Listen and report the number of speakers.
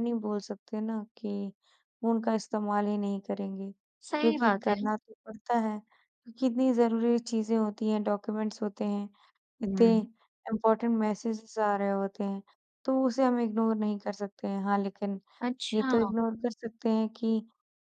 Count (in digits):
2